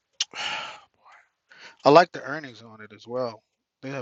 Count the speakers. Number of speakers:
1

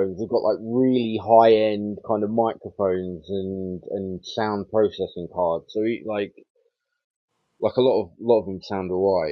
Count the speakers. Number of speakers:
1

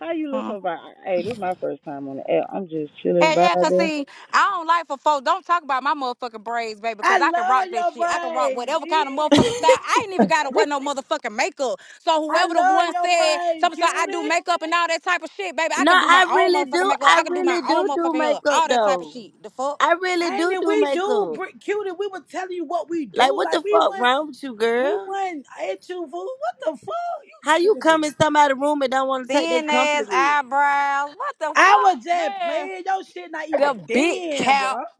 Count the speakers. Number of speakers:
4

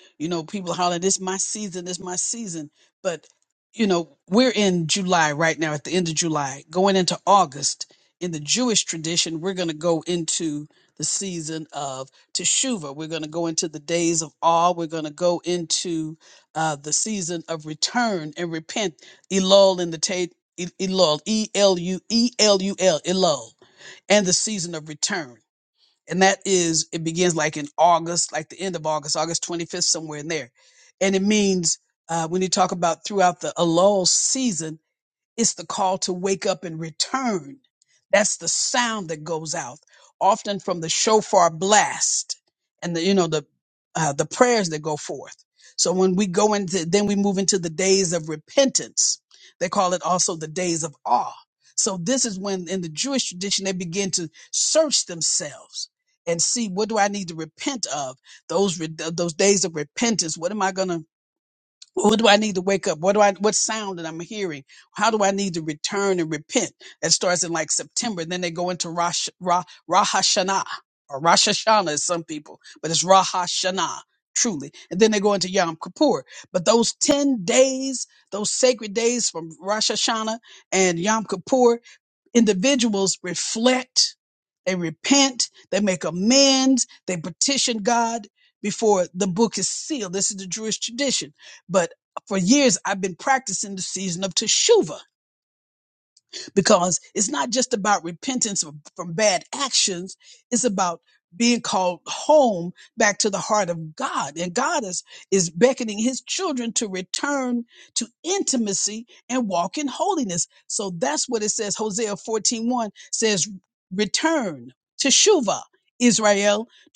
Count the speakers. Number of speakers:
1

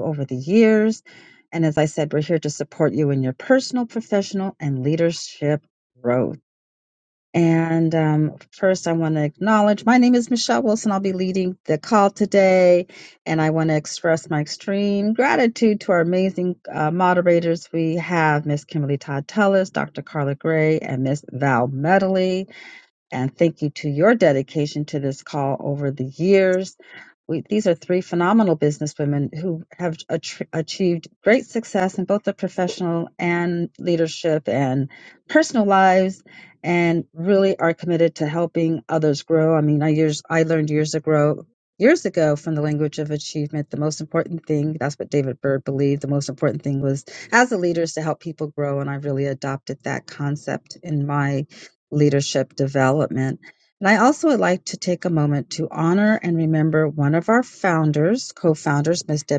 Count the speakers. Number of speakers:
1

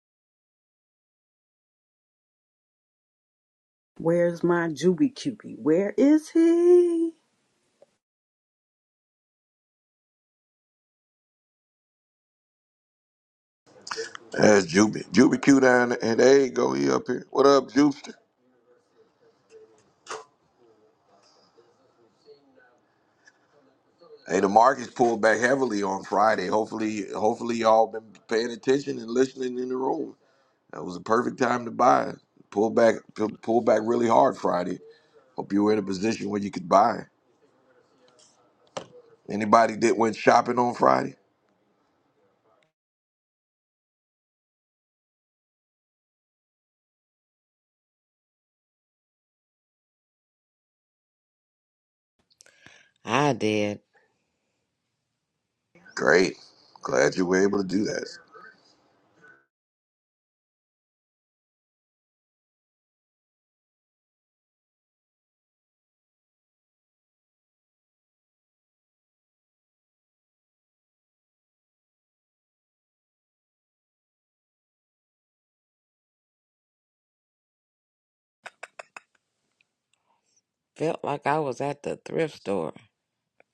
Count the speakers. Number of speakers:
3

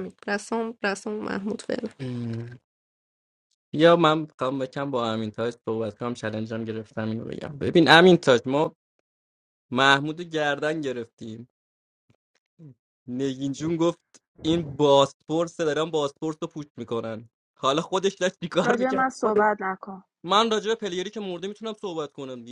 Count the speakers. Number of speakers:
3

